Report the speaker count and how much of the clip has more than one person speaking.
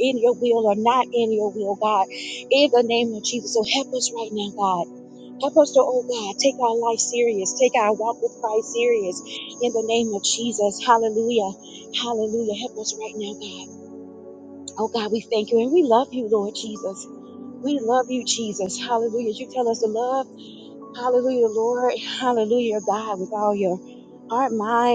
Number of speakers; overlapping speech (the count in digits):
1, no overlap